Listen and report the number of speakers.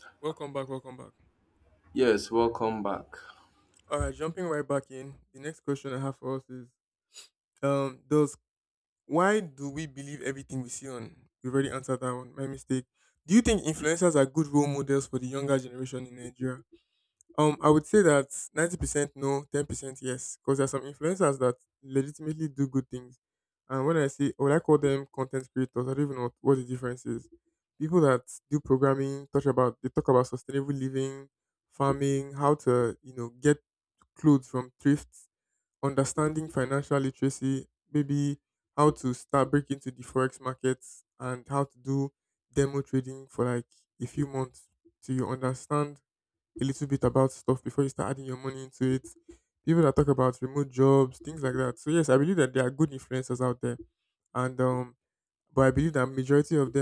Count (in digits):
2